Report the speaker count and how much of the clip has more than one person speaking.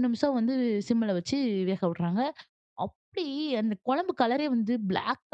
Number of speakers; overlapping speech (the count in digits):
1, no overlap